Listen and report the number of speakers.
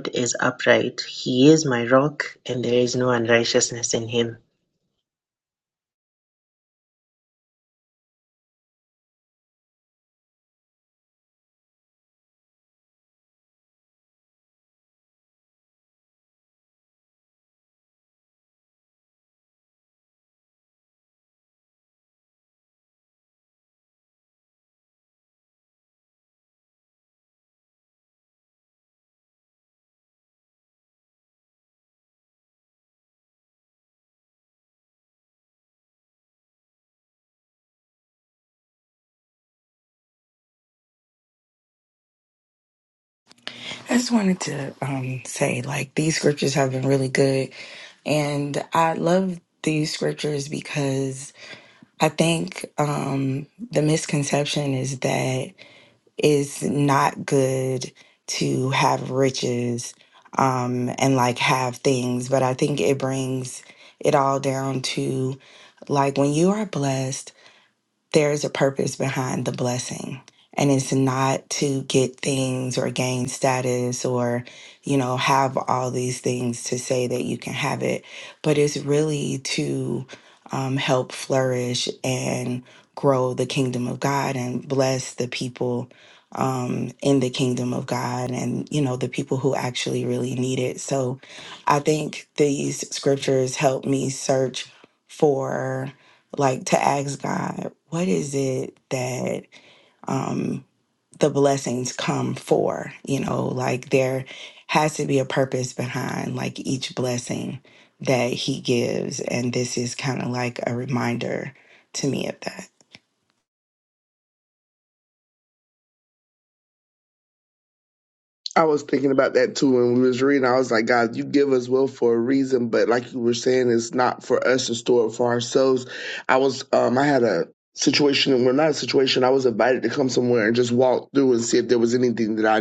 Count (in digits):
3